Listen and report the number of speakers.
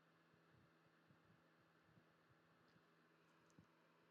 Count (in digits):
0